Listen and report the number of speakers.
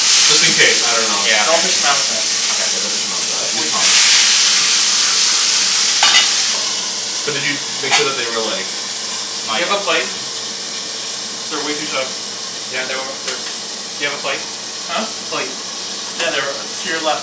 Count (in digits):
4